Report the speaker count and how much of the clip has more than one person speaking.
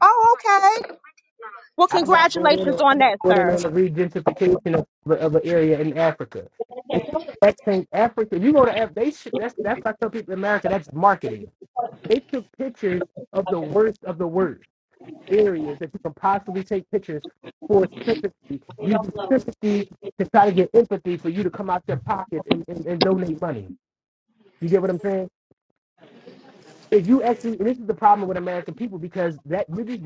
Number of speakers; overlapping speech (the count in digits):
2, about 6%